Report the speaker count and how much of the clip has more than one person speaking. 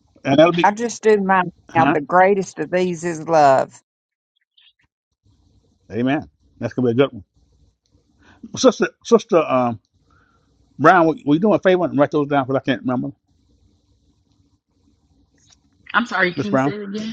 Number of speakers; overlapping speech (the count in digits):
3, about 4%